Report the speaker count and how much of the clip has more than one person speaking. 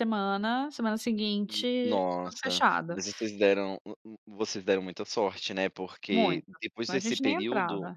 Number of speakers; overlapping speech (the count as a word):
two, about 35%